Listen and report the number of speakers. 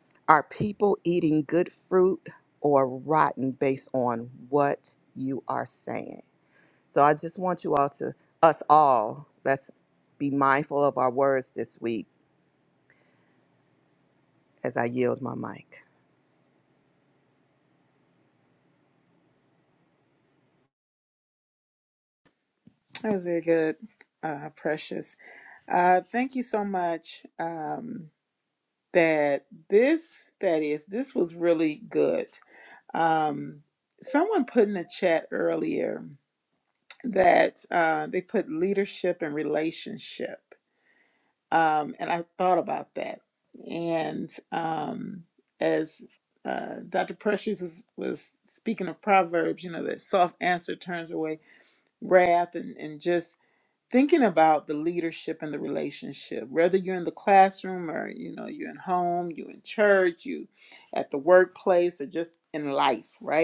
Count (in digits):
2